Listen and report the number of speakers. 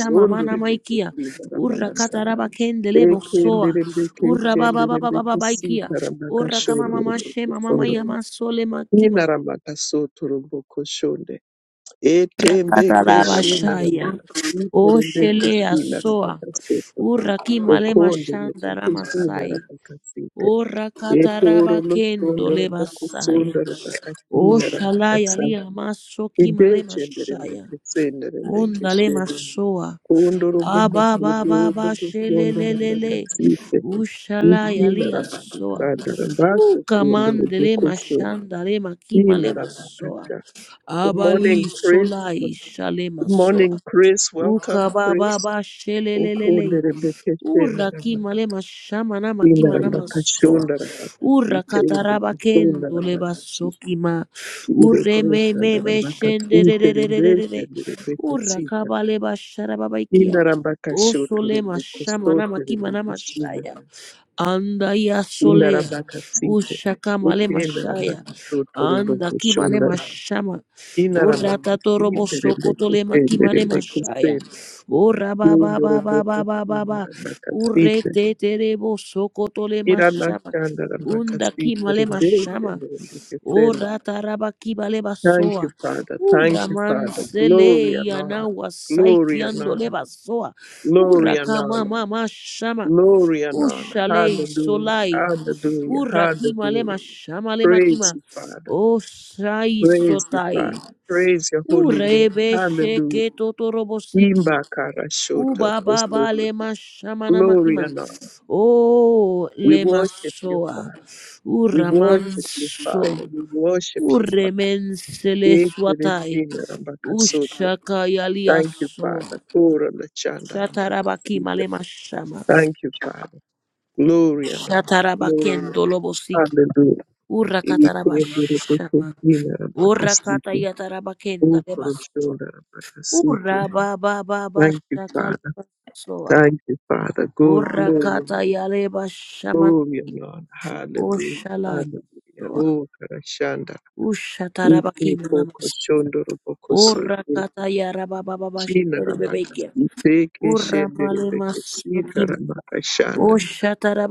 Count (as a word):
two